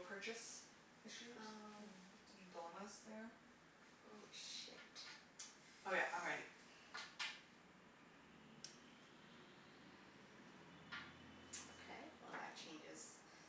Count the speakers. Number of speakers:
2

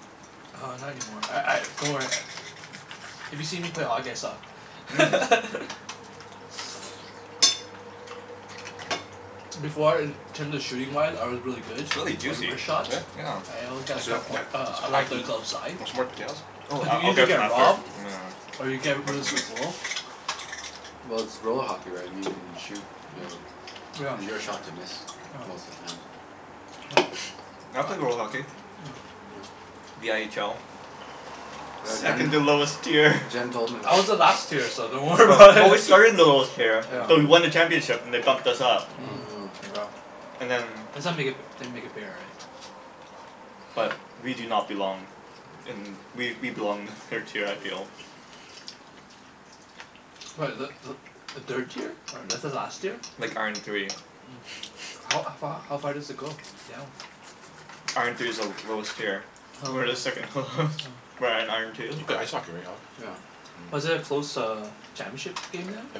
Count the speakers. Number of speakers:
4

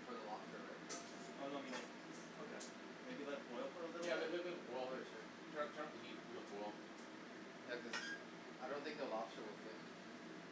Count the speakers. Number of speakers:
3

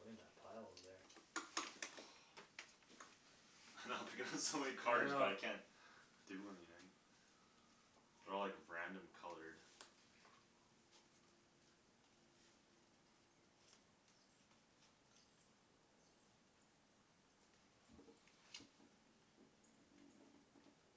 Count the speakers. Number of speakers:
2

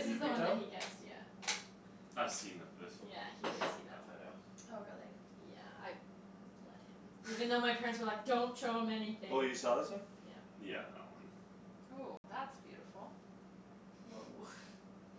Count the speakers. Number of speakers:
4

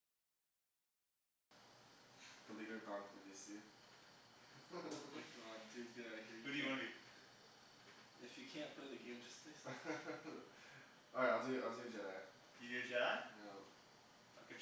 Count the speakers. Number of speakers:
3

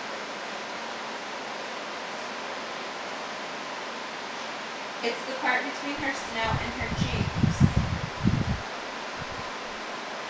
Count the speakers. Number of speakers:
1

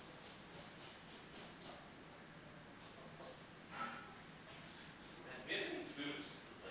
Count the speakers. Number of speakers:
1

